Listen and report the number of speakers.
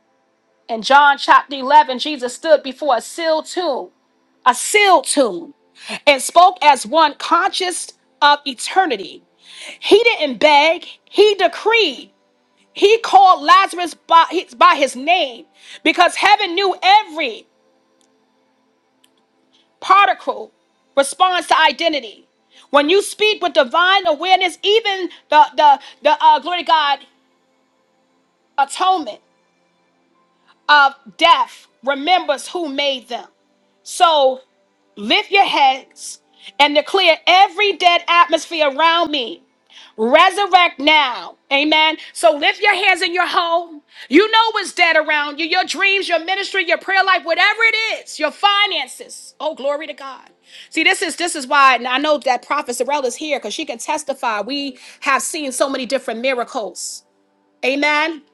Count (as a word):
one